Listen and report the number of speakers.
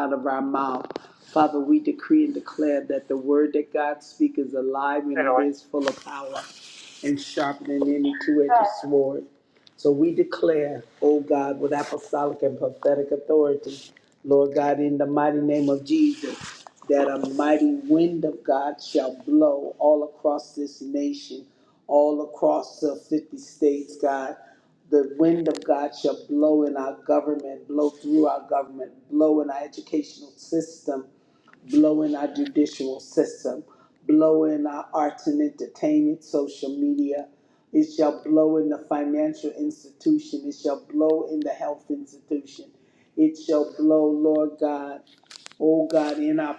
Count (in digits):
1